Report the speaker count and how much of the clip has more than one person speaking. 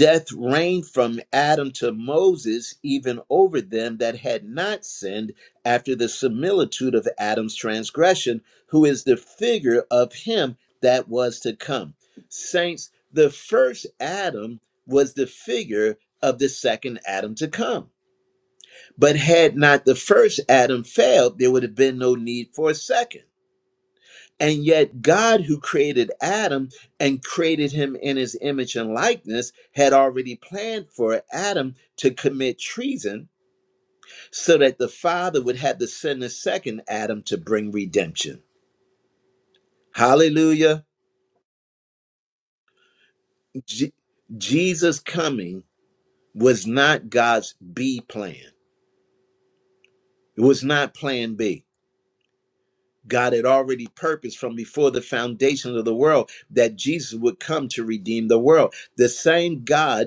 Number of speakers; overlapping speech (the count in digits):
1, no overlap